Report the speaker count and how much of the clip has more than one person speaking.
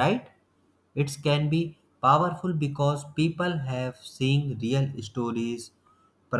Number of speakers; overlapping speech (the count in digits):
1, no overlap